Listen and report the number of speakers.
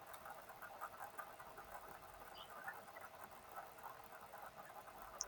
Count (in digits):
0